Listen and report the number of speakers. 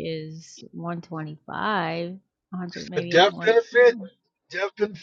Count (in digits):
2